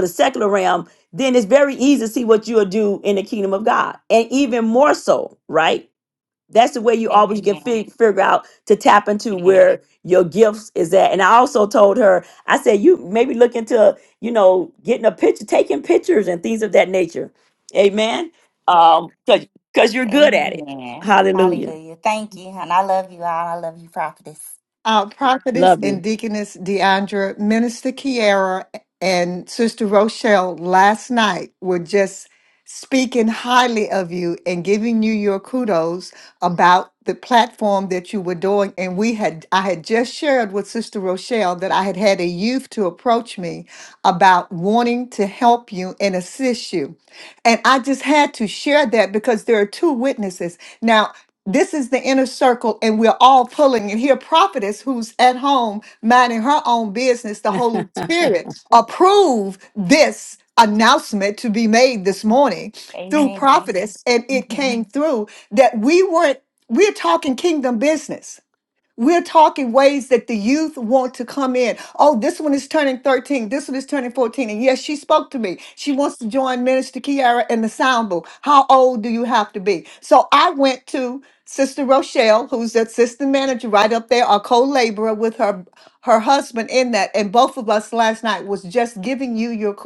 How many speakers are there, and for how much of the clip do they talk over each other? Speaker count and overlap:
3, about 3%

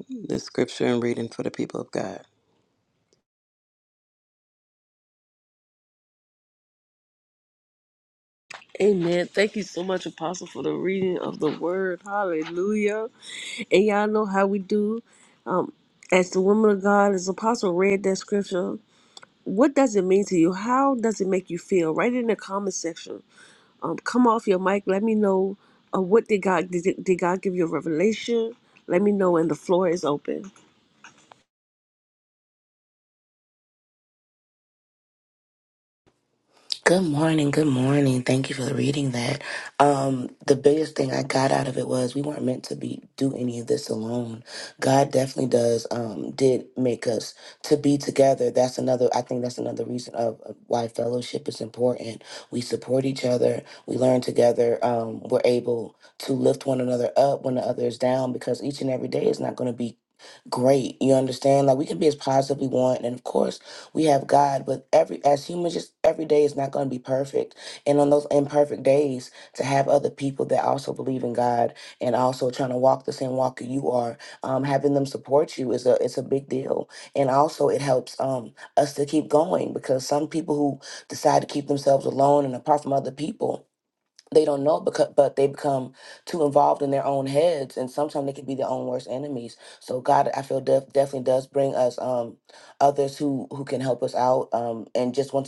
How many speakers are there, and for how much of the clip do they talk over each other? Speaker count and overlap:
3, no overlap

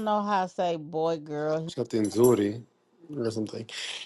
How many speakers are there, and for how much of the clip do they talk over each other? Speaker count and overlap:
2, under 1%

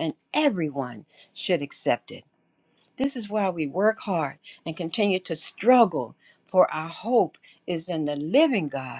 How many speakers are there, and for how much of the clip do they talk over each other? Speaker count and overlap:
1, no overlap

